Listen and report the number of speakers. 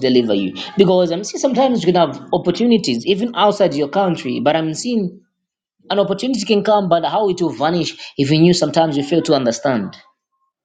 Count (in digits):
1